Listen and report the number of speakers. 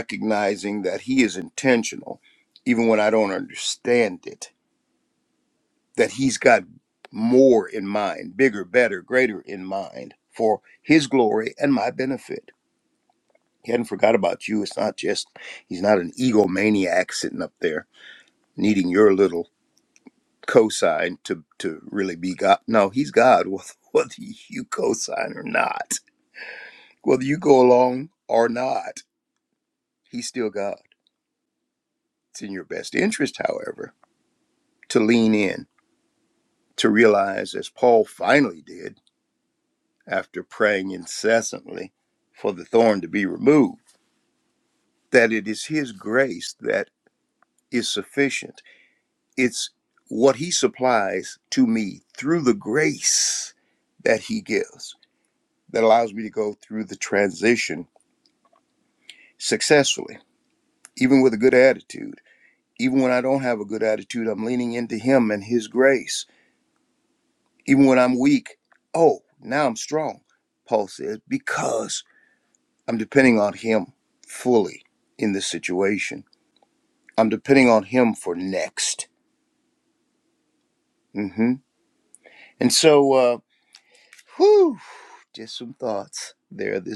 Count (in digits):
1